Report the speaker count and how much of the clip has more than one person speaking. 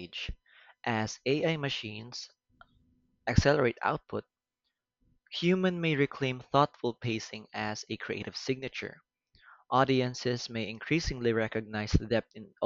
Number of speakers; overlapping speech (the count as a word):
one, no overlap